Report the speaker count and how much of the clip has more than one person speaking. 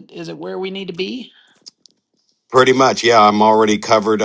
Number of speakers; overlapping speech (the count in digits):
2, no overlap